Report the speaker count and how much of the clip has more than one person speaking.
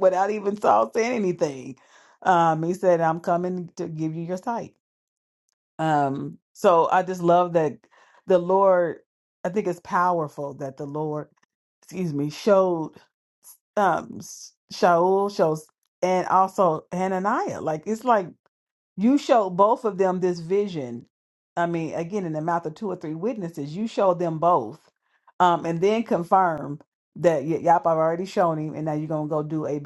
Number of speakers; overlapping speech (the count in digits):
1, no overlap